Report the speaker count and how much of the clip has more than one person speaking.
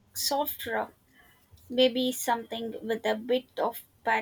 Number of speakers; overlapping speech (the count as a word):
one, no overlap